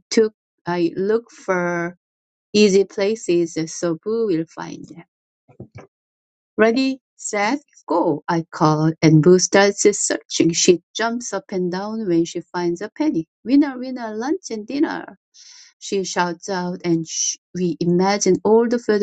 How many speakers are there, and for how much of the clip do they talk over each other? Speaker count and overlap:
one, no overlap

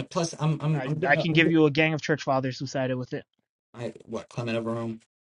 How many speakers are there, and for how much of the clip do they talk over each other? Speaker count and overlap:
two, about 15%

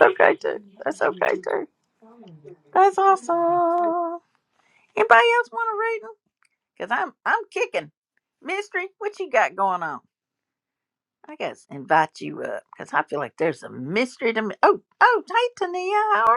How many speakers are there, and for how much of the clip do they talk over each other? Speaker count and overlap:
one, no overlap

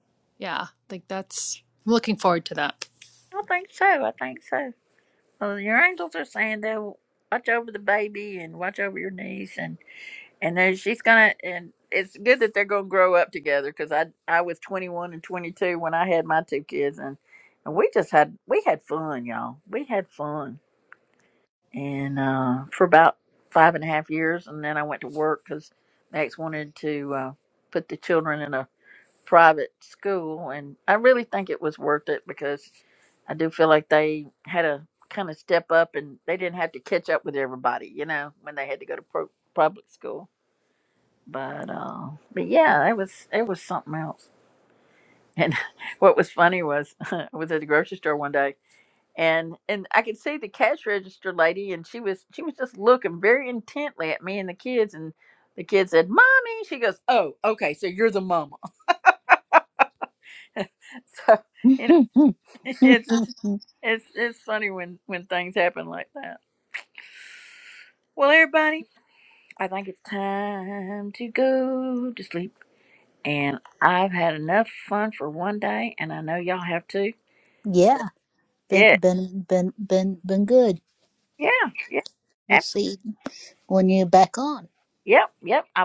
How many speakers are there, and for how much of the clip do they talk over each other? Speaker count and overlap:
three, under 1%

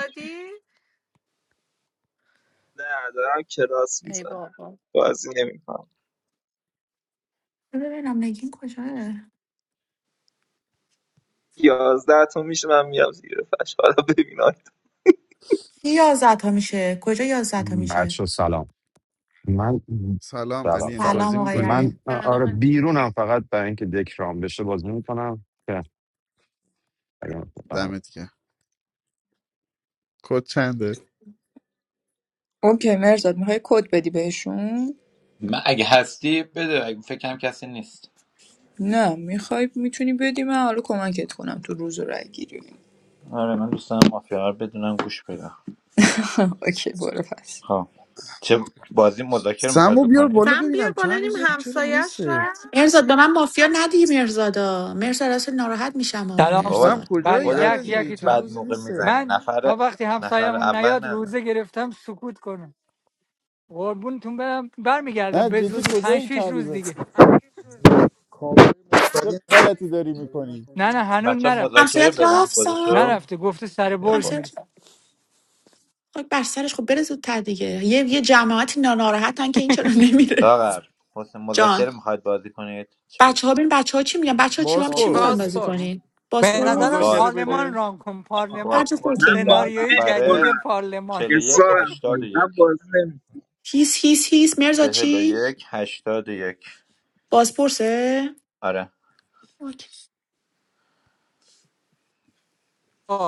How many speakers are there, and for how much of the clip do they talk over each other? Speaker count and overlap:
nine, about 20%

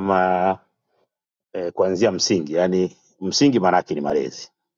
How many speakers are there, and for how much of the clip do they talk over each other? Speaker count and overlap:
one, no overlap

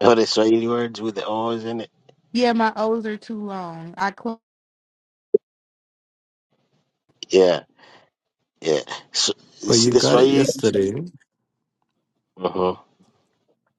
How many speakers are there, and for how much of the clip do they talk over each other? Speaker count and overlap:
three, about 6%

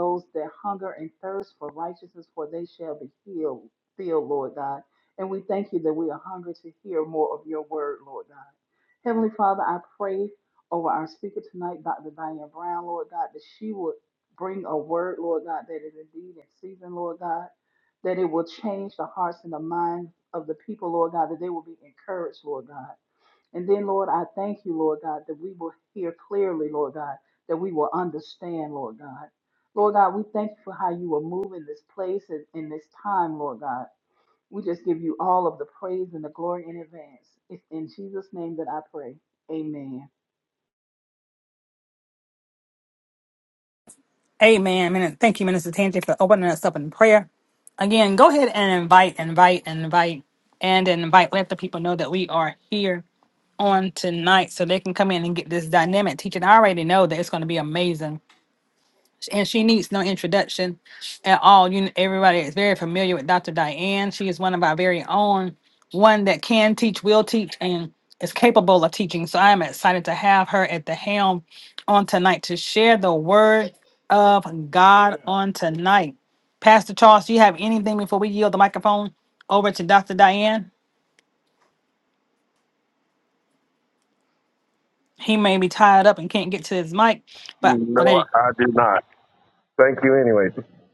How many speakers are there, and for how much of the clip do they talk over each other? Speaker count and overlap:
three, under 1%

